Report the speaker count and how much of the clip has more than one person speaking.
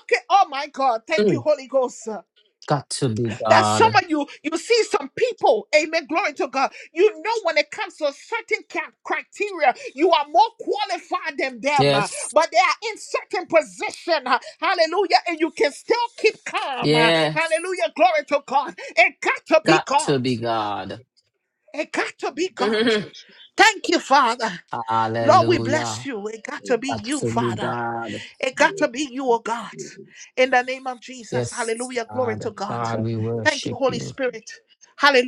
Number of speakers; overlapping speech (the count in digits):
2, about 15%